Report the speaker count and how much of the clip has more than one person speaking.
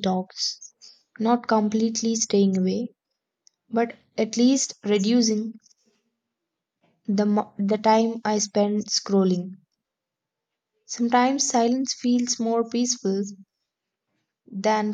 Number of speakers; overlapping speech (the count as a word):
one, no overlap